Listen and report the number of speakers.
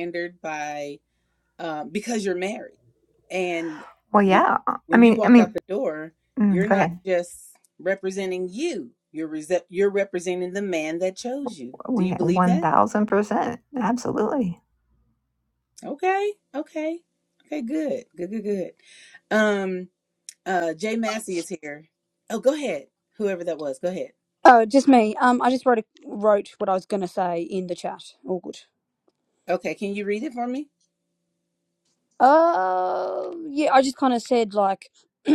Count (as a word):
three